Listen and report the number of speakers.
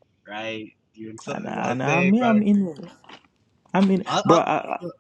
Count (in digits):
2